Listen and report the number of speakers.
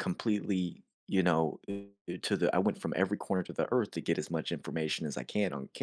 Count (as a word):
one